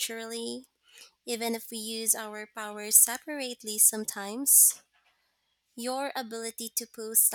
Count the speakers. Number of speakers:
1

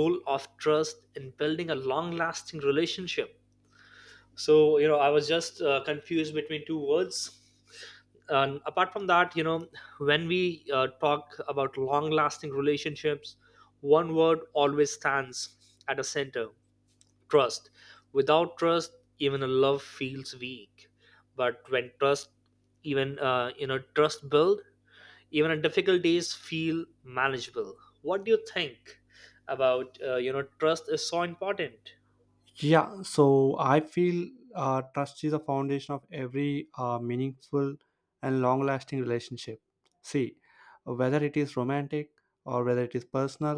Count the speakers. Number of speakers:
2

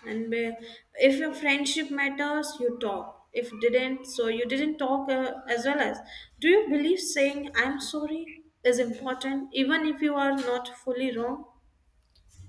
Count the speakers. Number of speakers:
1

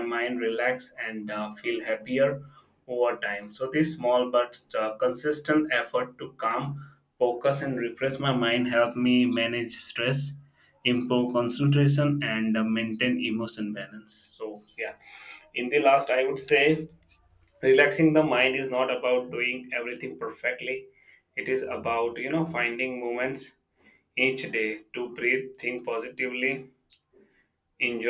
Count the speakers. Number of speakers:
1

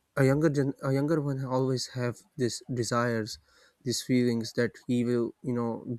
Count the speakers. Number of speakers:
1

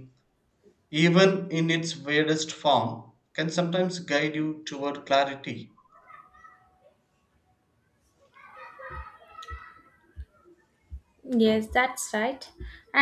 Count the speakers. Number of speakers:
2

